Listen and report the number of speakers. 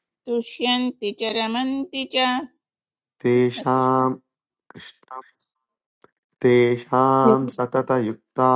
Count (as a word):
two